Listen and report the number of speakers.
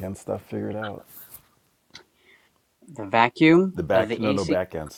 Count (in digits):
2